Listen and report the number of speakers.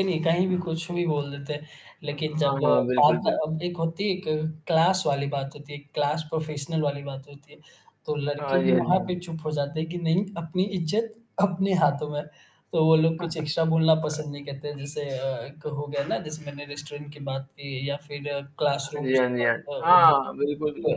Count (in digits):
2